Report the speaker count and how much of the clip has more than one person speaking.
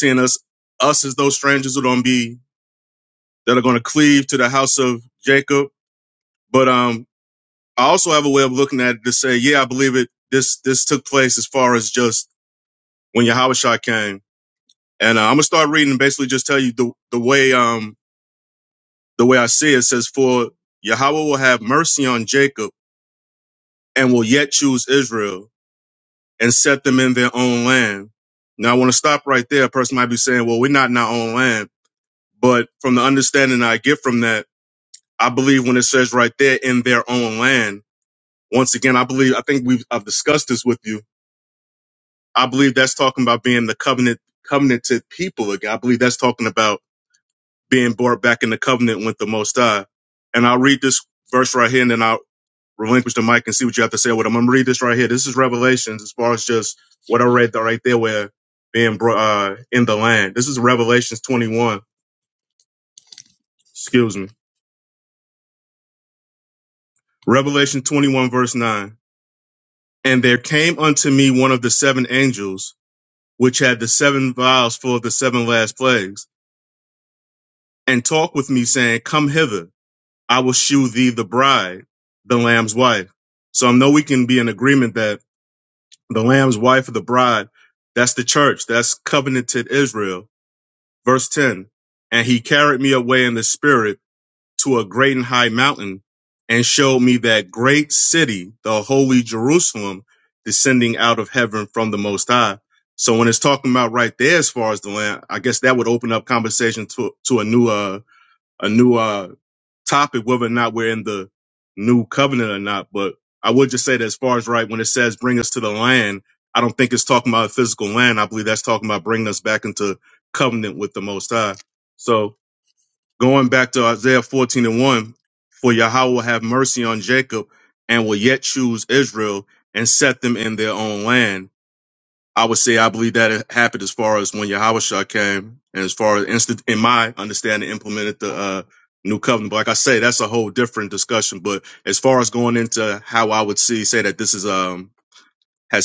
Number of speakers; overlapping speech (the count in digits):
1, no overlap